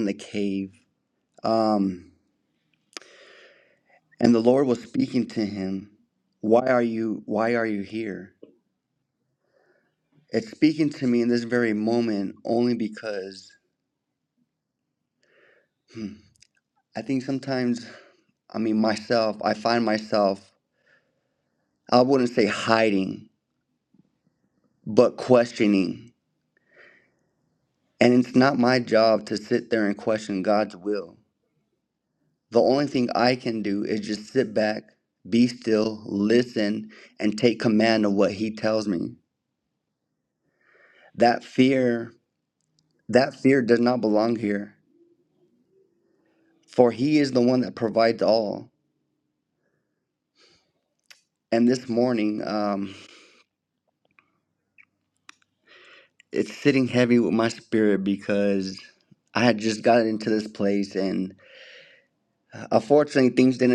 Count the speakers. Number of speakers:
one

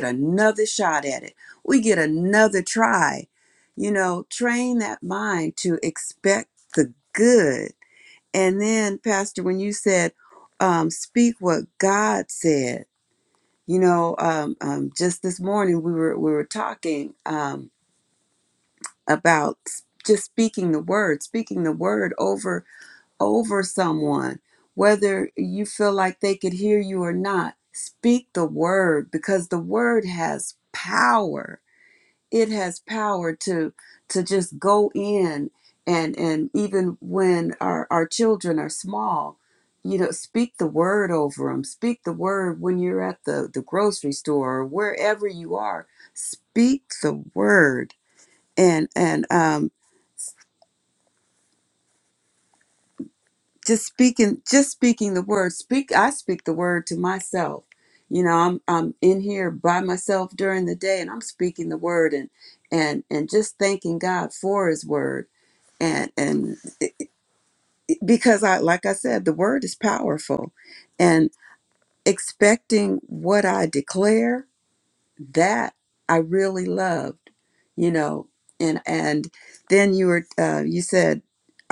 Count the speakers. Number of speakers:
one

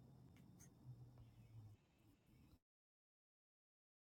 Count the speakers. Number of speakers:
zero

